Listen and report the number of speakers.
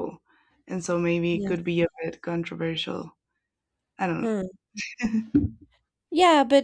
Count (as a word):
two